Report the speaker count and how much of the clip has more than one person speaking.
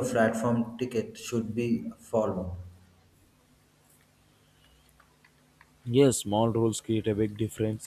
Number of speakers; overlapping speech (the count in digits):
2, no overlap